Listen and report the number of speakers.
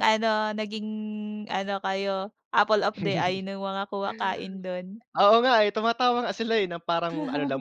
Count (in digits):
2